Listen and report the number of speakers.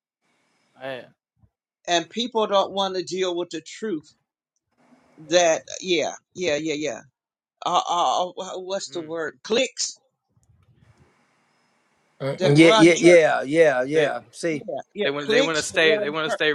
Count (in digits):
3